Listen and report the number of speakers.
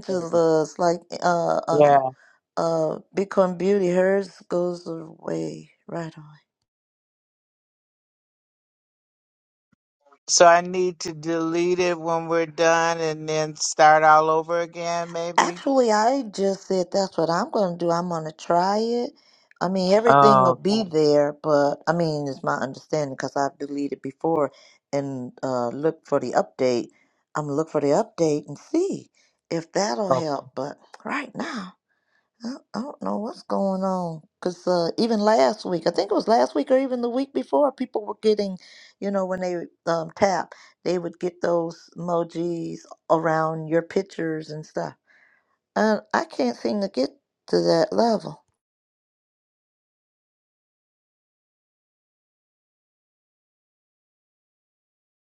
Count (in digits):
2